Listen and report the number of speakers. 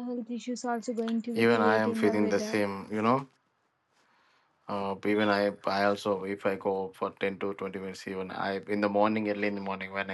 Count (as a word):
two